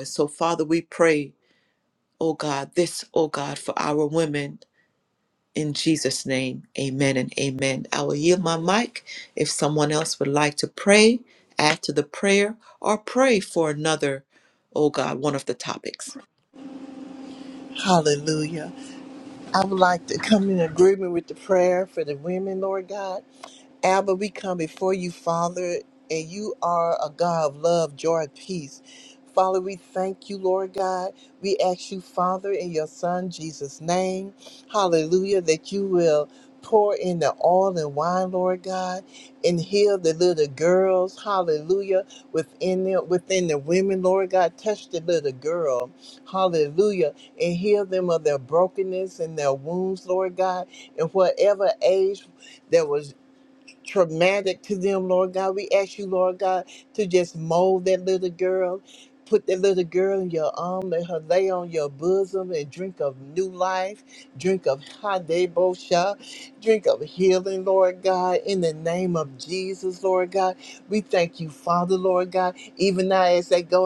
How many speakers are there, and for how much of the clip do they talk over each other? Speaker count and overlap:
two, no overlap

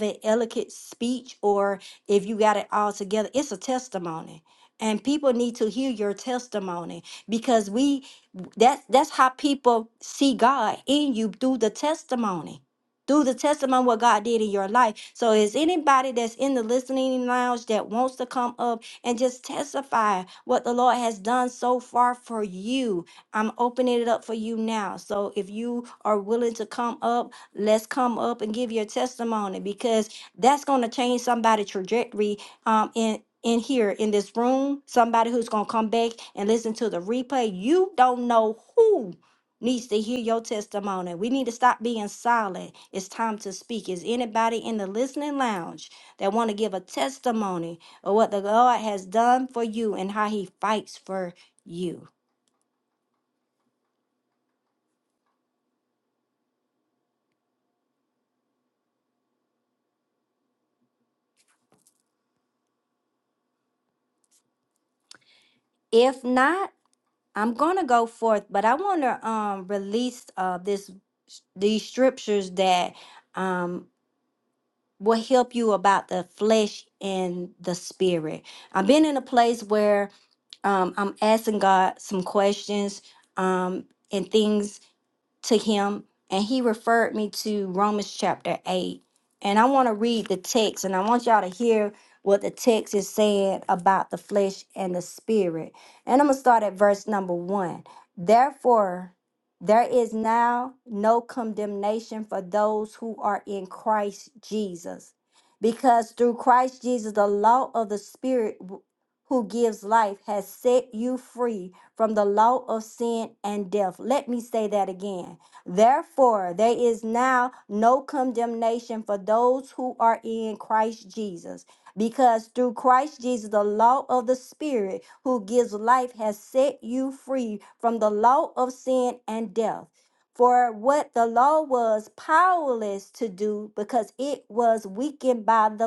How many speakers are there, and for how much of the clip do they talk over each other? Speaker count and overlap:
one, no overlap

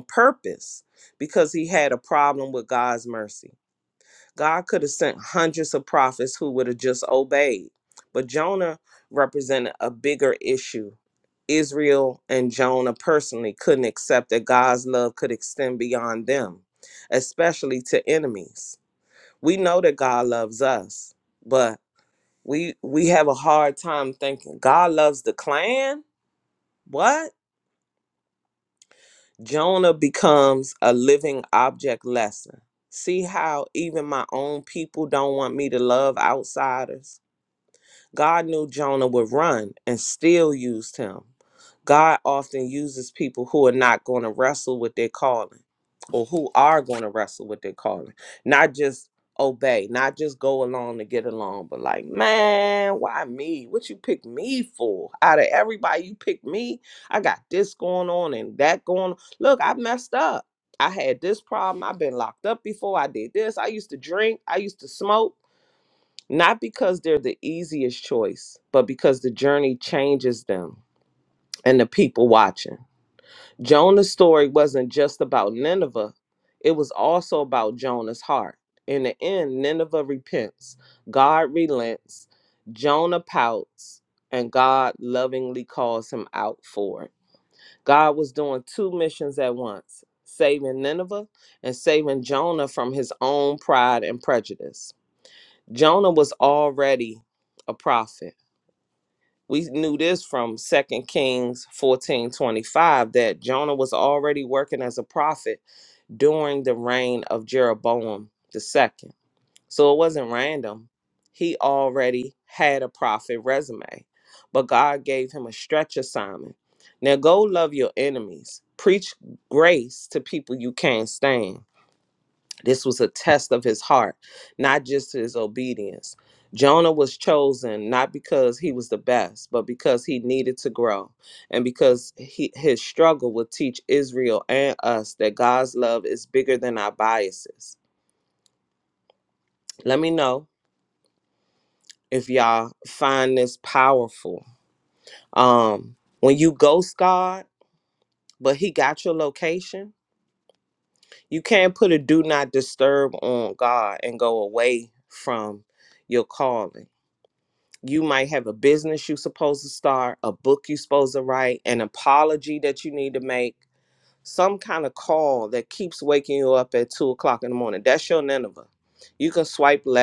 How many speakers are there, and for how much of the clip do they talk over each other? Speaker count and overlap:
one, no overlap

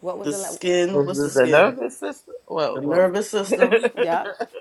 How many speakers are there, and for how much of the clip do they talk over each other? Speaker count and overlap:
three, about 31%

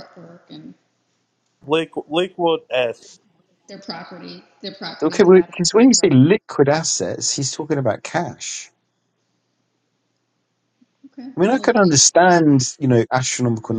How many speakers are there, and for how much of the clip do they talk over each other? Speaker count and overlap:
three, about 14%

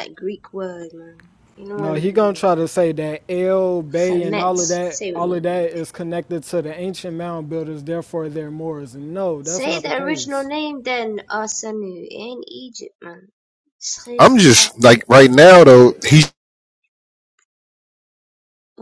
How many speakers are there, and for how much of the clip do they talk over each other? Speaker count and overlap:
three, about 16%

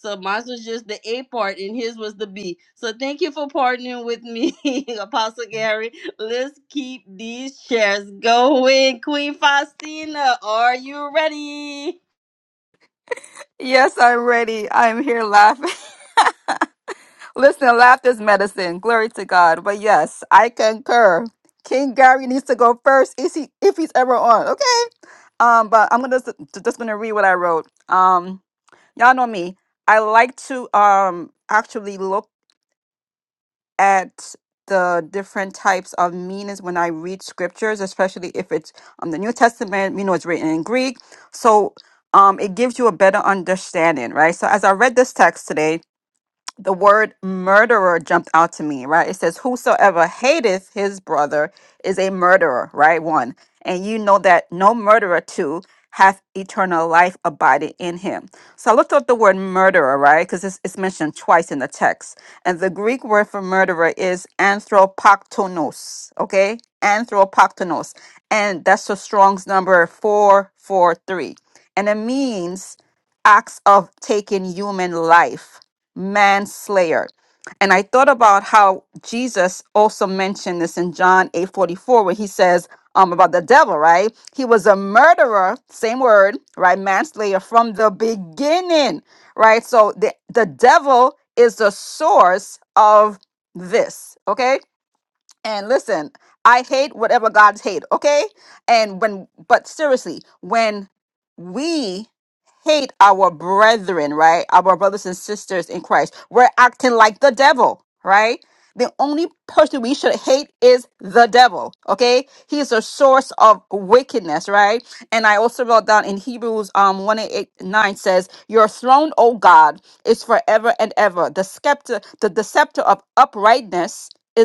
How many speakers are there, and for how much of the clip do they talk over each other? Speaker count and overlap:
two, no overlap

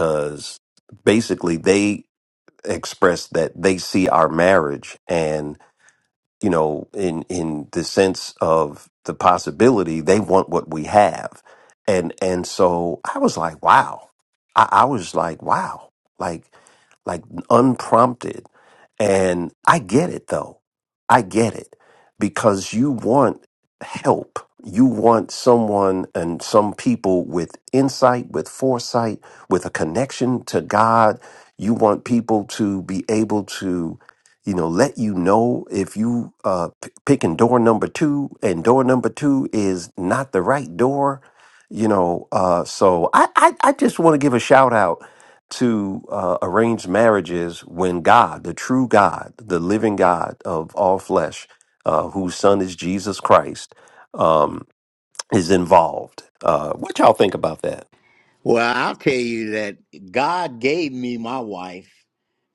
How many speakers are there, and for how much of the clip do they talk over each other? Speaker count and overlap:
two, no overlap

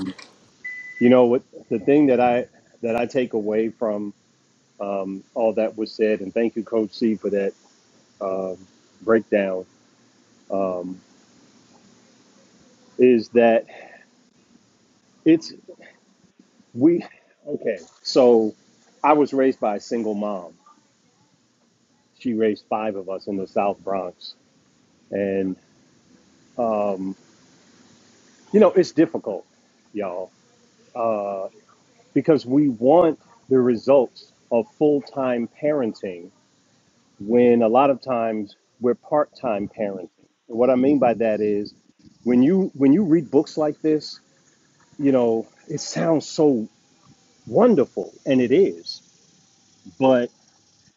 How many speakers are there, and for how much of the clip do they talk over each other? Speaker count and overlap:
one, no overlap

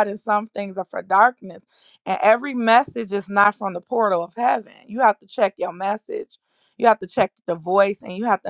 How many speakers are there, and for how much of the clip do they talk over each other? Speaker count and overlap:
one, no overlap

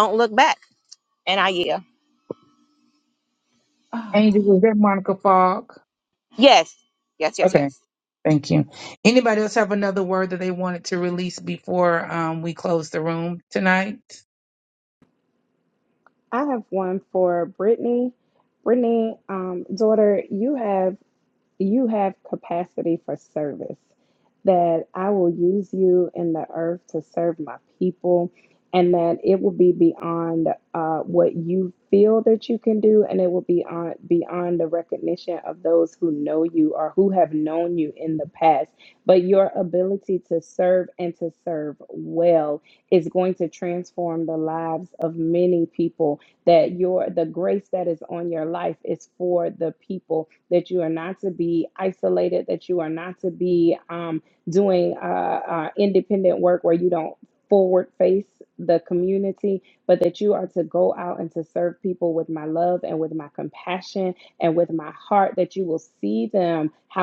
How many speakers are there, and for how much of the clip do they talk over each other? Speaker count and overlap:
three, under 1%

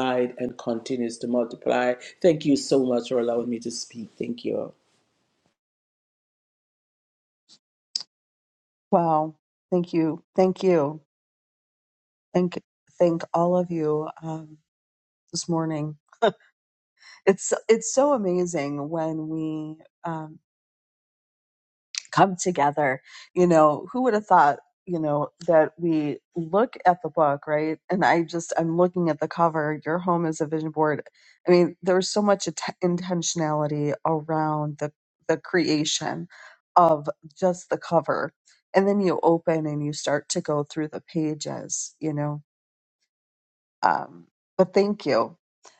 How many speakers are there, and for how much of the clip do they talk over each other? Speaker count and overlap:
two, no overlap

